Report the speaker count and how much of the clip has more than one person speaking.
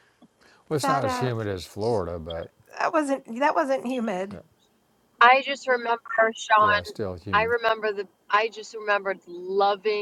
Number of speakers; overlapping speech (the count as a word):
three, about 11%